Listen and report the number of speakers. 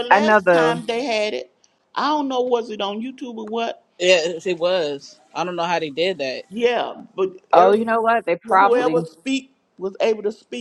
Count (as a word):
three